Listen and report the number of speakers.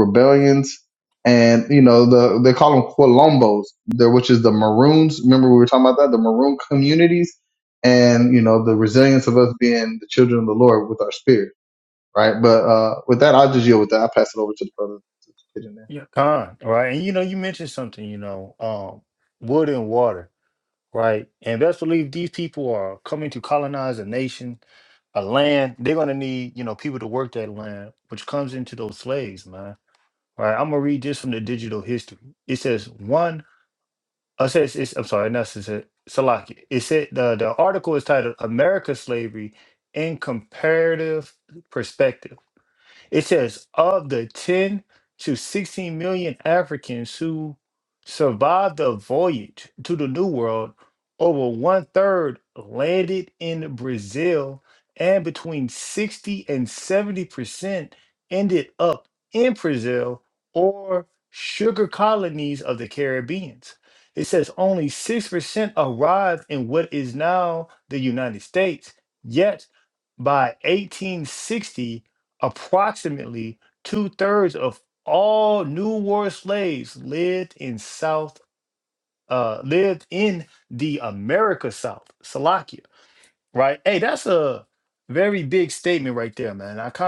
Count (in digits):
2